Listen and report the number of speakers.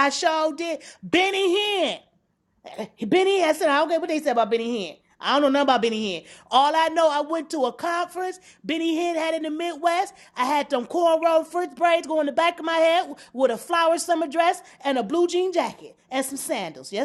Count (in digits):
1